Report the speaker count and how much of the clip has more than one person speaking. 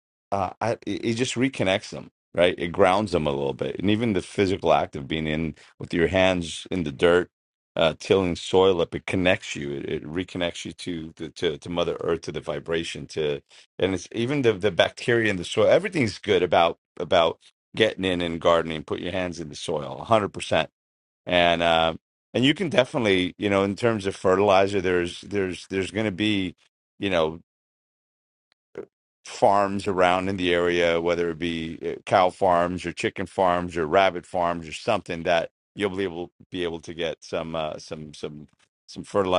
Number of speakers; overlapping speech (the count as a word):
one, no overlap